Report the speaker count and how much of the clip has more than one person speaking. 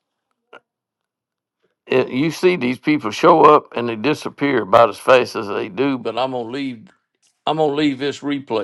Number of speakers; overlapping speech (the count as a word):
one, no overlap